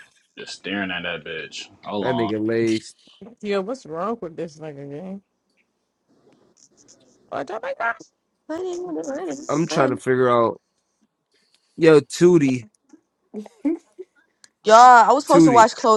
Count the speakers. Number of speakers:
four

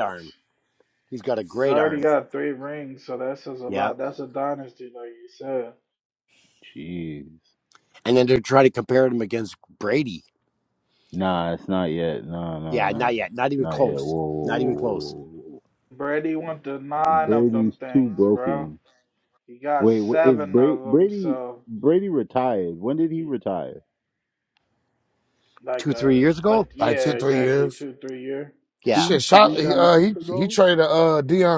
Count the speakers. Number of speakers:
four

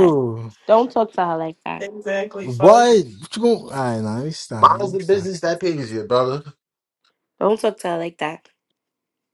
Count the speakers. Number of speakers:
four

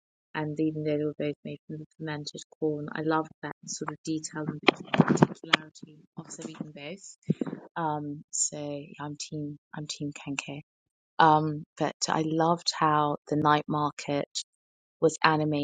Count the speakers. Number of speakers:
one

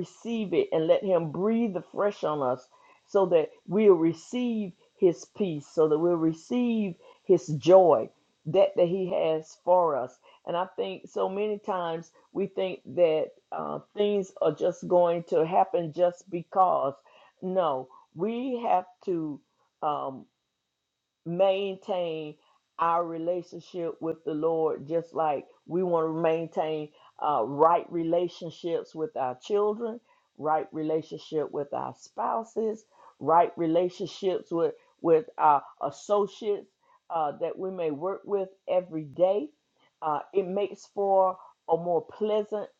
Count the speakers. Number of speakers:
one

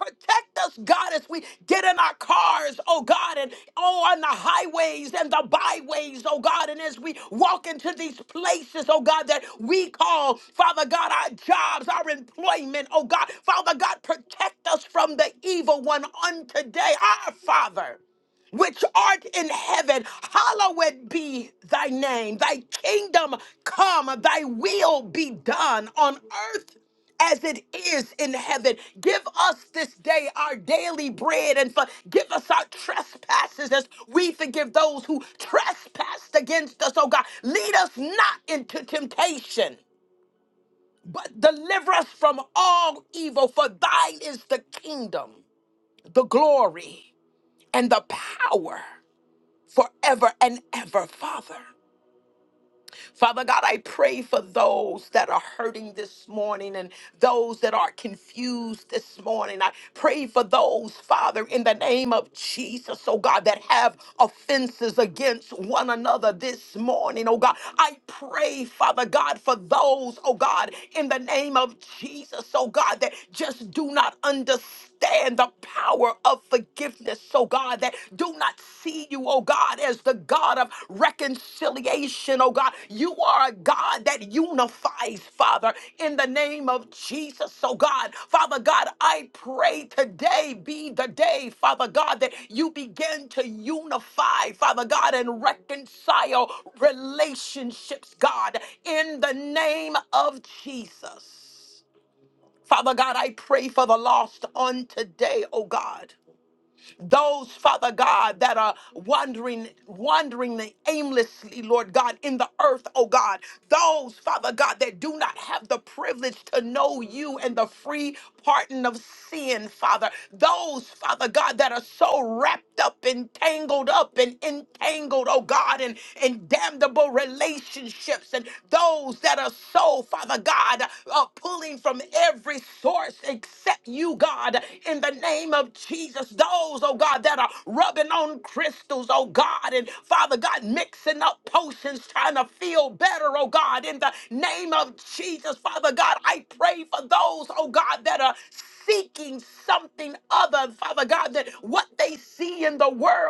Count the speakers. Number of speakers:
one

